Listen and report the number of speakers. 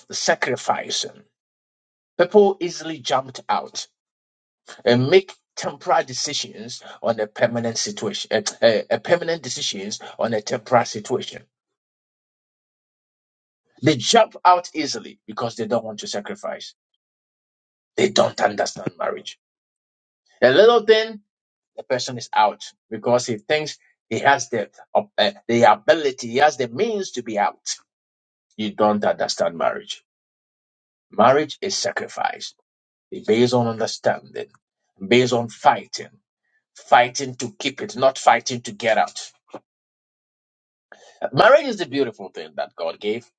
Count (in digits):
1